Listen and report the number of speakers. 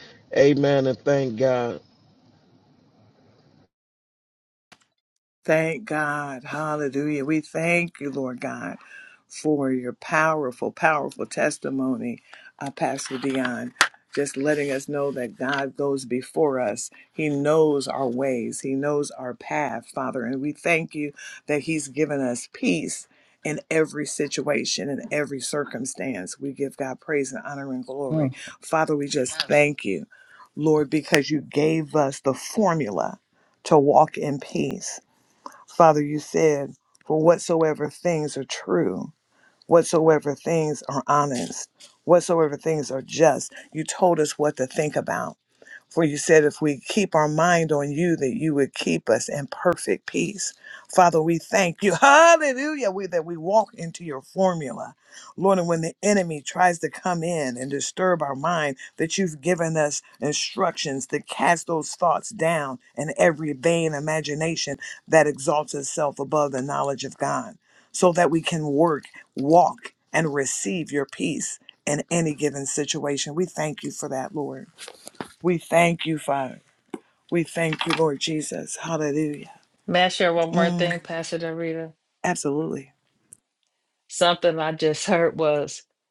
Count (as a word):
three